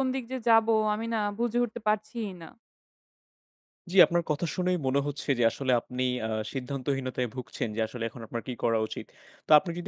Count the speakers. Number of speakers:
2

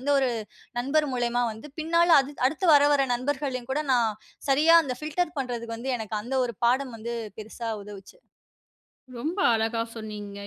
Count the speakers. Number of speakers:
2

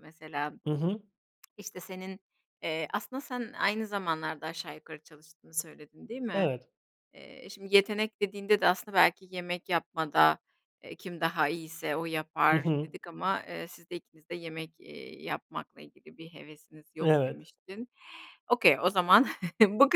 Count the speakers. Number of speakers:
2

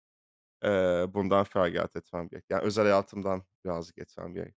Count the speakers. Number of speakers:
1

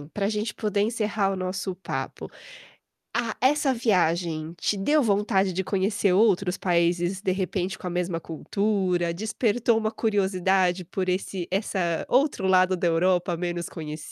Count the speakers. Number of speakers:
1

